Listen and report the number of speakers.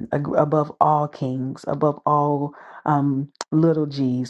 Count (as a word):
one